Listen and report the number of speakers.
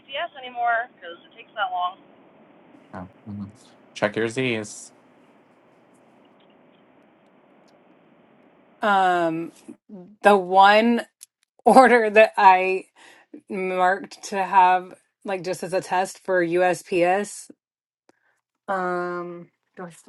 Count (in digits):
3